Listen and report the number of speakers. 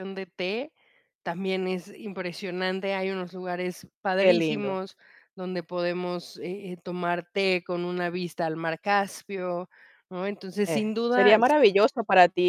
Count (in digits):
2